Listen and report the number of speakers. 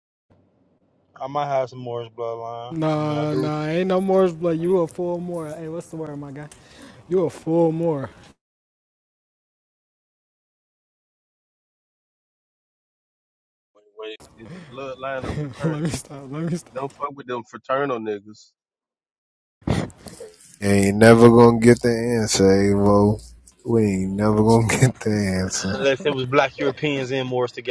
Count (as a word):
four